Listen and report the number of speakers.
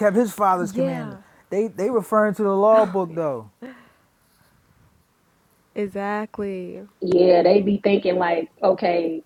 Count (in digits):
3